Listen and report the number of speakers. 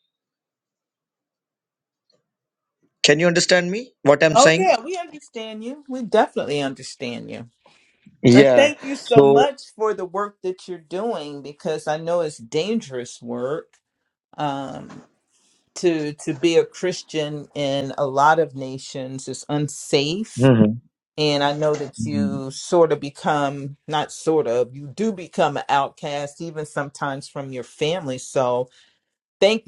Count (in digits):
2